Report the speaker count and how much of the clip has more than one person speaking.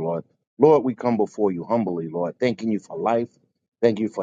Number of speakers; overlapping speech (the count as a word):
one, no overlap